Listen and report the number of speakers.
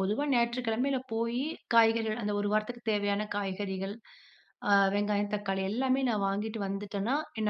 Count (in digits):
1